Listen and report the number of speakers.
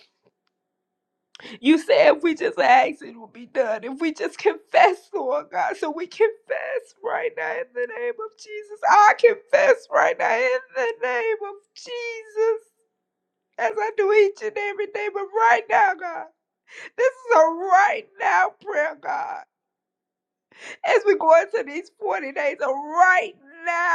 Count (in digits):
1